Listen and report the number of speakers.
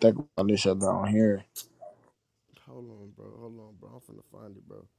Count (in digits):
2